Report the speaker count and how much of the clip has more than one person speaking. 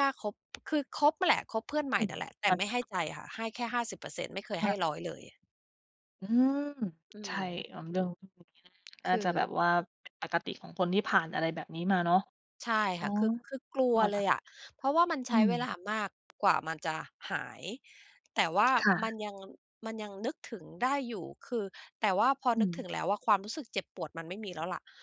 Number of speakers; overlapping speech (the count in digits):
2, about 8%